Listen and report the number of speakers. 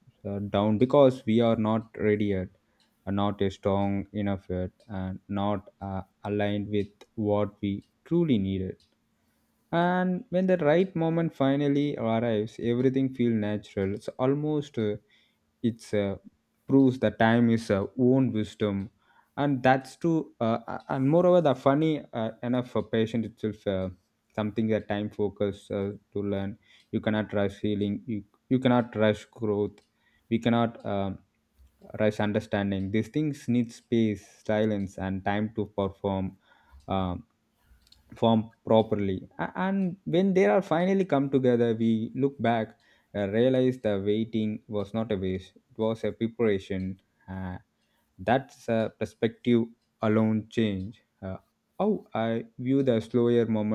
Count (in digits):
1